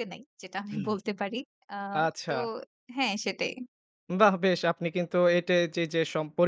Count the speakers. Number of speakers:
2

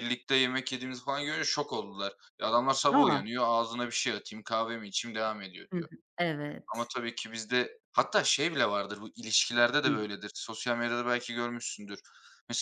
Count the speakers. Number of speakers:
2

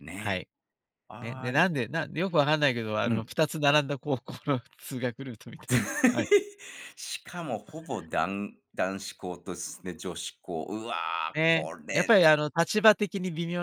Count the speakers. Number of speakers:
2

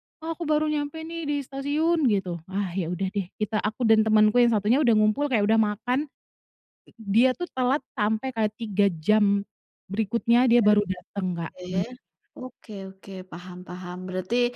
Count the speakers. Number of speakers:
2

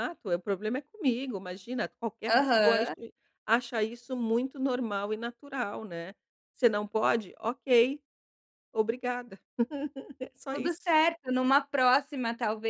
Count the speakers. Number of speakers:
2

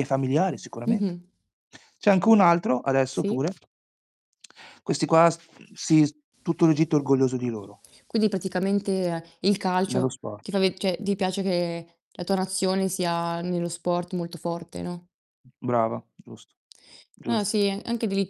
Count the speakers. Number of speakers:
2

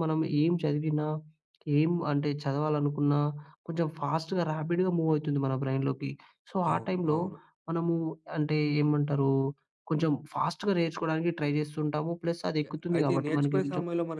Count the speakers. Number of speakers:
2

